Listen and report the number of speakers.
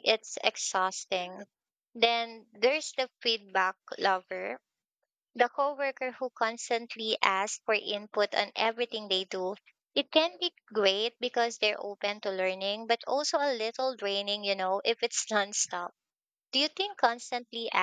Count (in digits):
1